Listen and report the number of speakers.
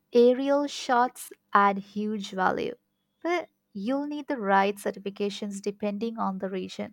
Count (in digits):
1